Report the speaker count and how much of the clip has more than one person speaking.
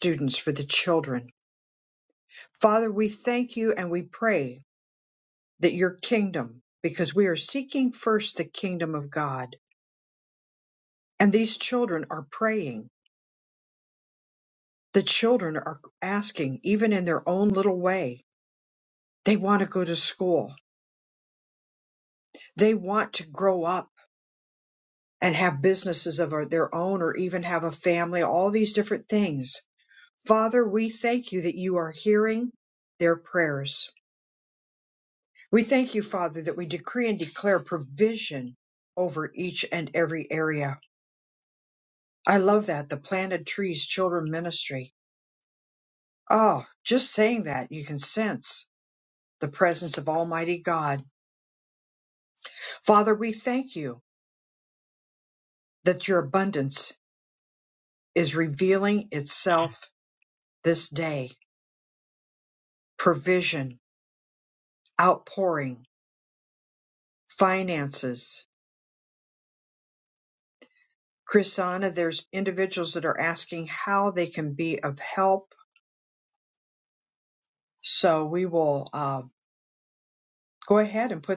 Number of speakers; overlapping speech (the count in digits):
1, no overlap